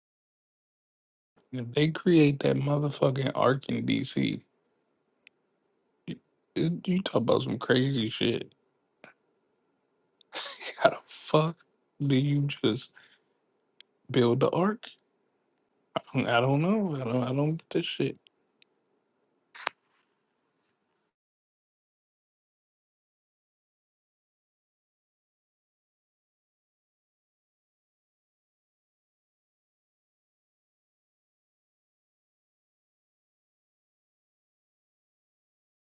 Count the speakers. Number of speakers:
1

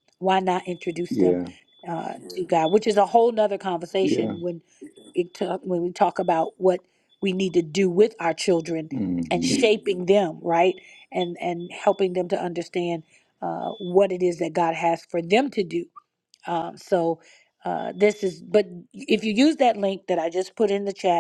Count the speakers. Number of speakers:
2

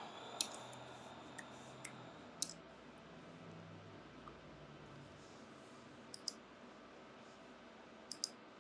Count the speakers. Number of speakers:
0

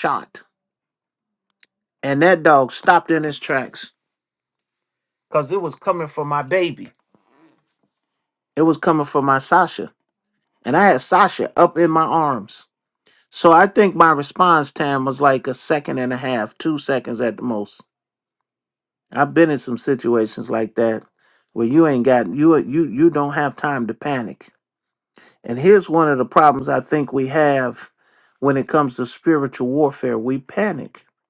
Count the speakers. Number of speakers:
1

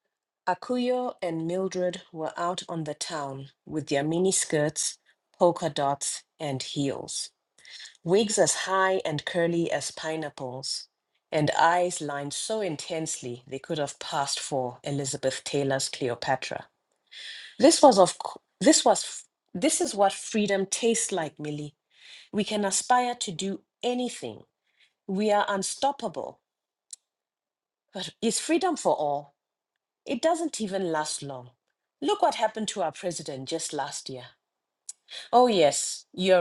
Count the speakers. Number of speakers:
1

